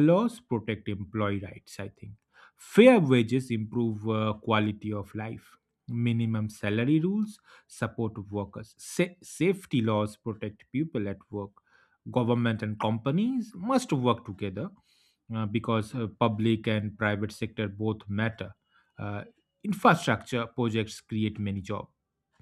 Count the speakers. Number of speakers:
1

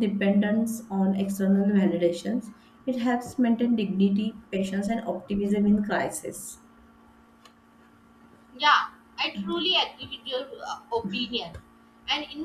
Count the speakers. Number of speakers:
2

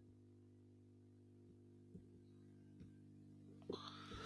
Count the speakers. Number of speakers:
0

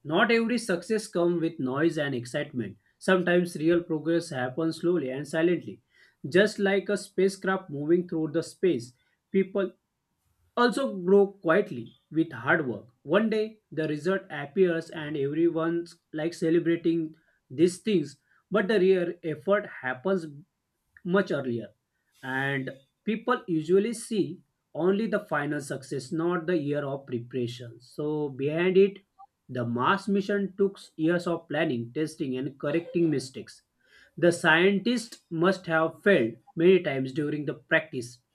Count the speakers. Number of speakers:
1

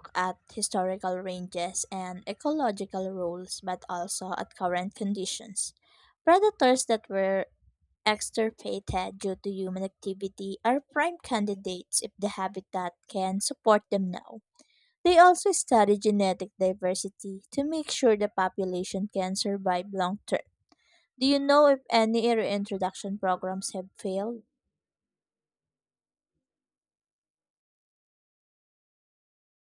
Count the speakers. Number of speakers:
1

